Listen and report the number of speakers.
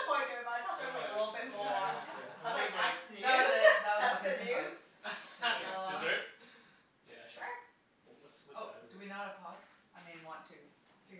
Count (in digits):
4